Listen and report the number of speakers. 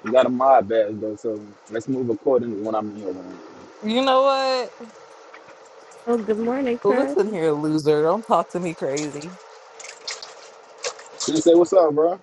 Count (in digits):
3